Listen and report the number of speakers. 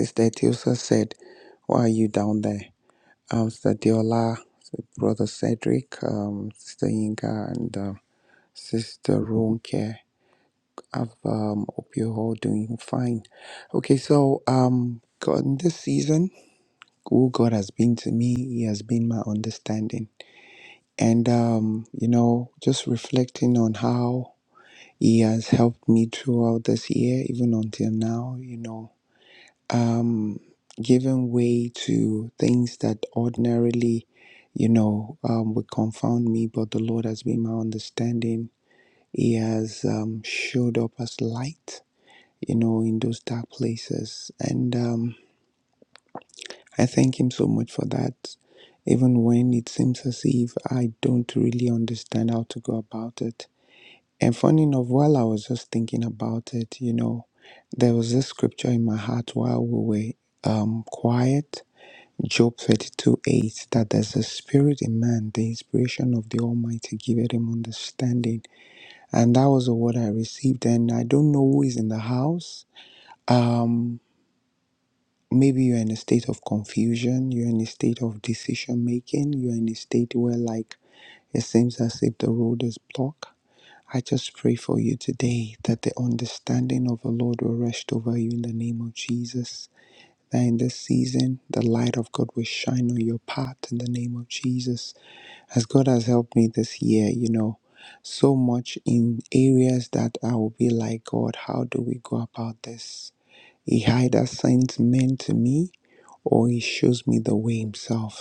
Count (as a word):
one